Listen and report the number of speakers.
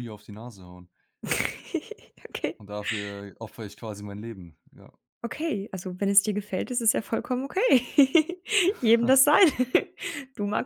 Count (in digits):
2